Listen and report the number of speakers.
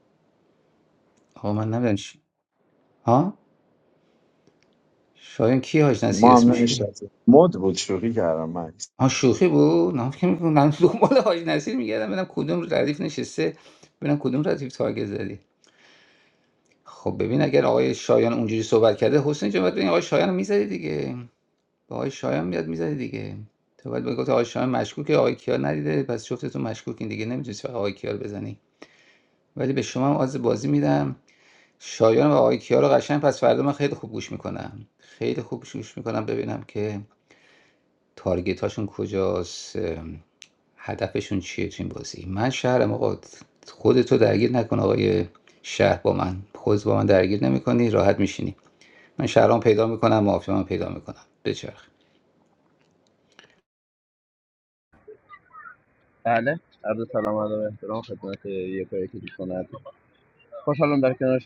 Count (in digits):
3